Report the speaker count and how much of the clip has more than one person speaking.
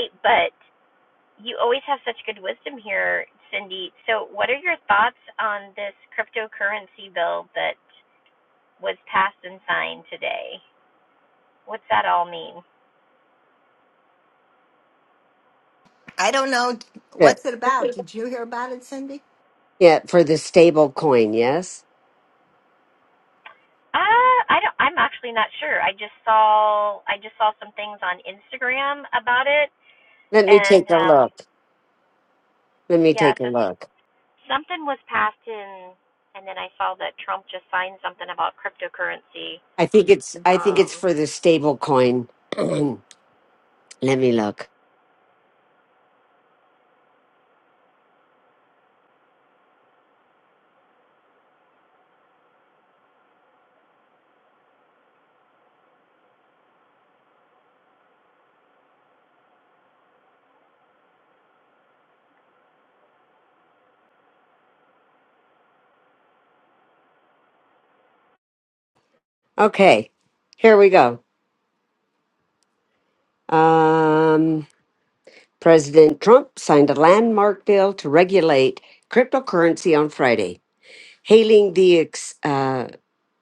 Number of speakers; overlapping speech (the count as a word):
three, about 2%